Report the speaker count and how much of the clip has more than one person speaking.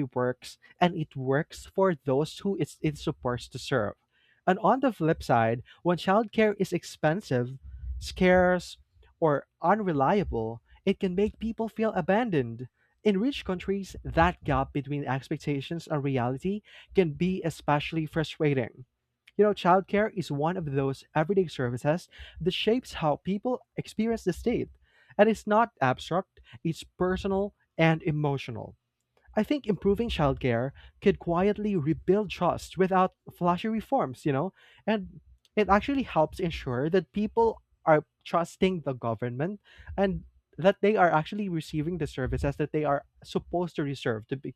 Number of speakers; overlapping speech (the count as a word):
one, no overlap